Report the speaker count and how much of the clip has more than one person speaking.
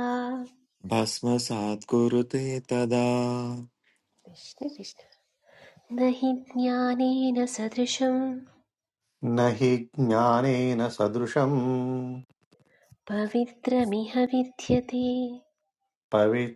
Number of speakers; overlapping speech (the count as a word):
three, no overlap